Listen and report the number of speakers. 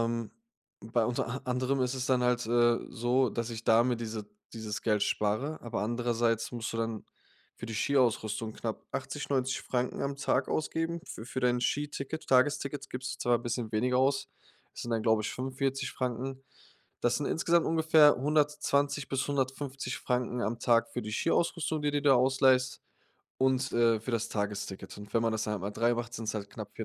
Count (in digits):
1